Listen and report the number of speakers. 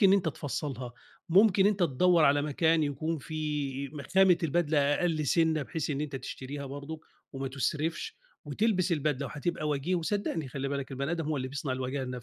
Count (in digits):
1